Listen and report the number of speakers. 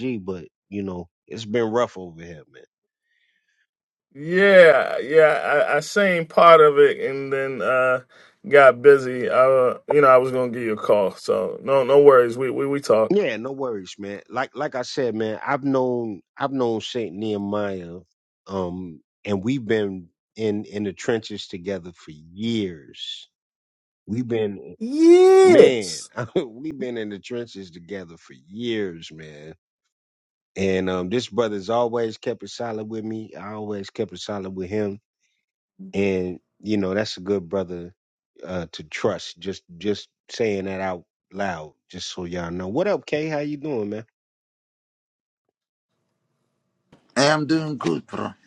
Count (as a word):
three